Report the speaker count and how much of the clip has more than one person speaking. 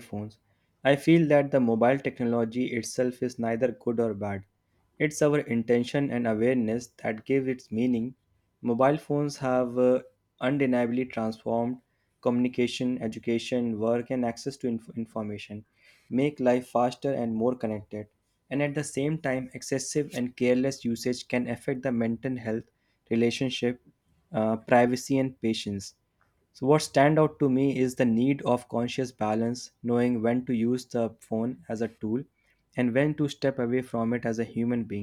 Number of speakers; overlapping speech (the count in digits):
1, no overlap